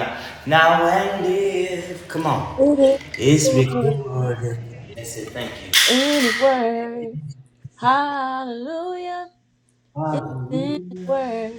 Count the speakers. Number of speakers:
2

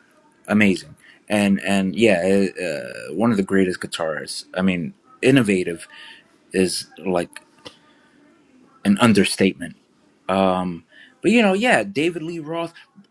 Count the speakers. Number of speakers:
1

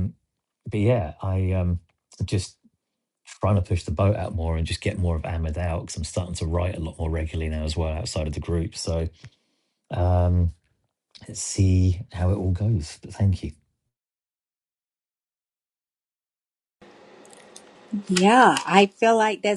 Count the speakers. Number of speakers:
2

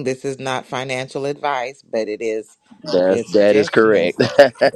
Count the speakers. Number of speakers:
2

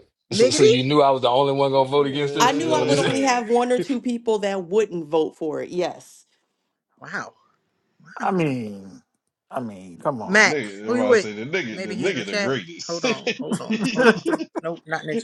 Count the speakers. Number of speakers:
5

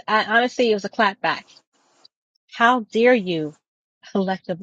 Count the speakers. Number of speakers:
1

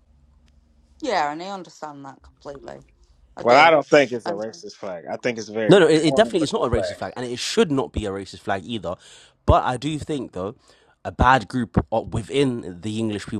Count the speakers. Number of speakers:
3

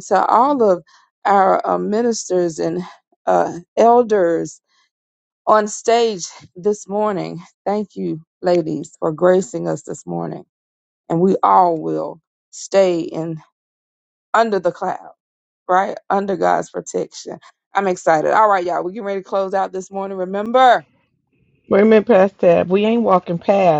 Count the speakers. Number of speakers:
2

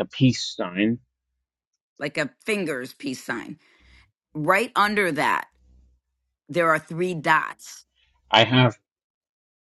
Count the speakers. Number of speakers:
2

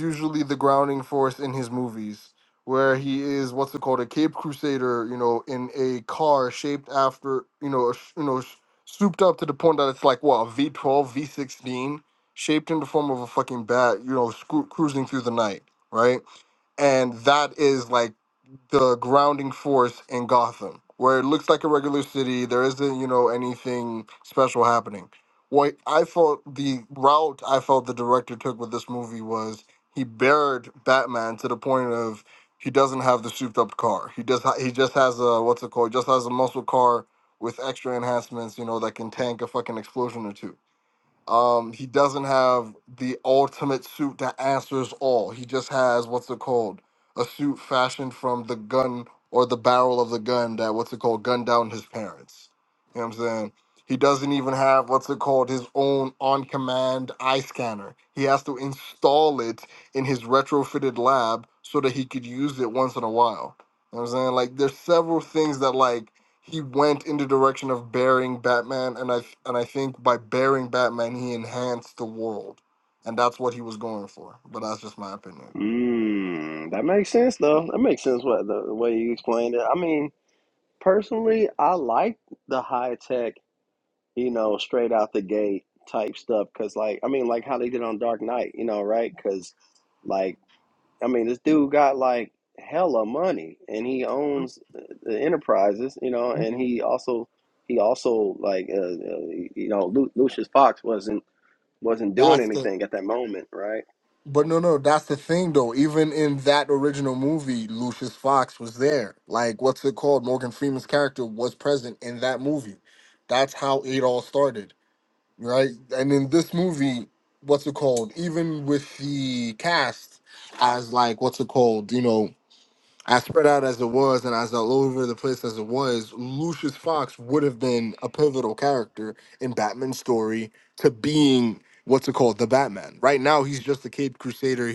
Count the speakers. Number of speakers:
2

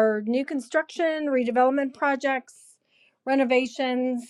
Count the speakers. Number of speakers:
1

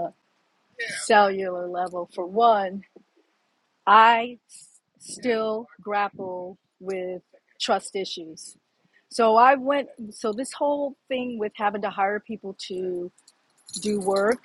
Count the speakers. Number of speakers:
1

